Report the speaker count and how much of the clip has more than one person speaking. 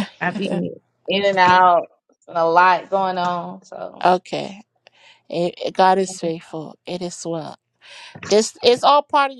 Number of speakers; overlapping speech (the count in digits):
2, no overlap